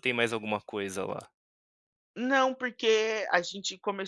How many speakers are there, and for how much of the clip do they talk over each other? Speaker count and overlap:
two, no overlap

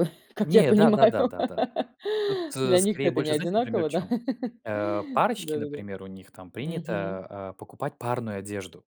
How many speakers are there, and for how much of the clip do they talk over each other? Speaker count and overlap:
two, about 36%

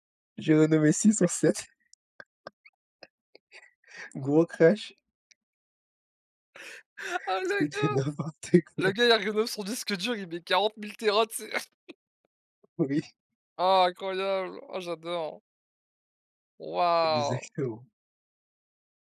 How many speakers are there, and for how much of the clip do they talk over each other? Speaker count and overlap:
two, about 5%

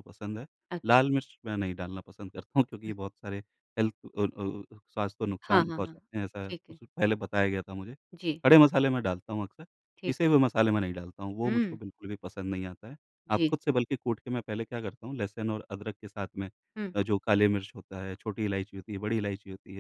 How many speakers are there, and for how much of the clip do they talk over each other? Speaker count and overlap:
two, about 8%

